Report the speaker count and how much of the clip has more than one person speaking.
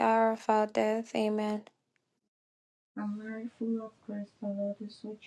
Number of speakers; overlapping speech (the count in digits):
2, no overlap